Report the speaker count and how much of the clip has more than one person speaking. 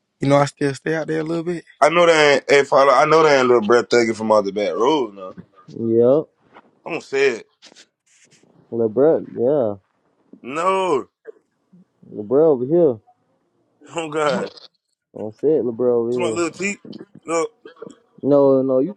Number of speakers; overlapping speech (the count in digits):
3, about 1%